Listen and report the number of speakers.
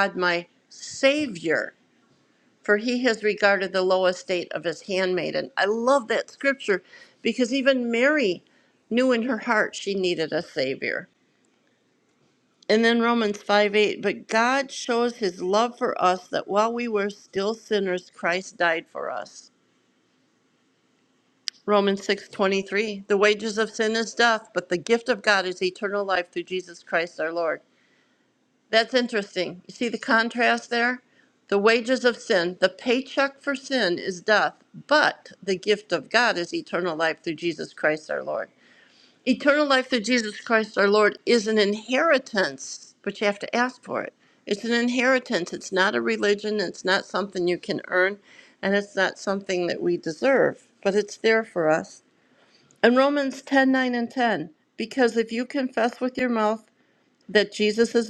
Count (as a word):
one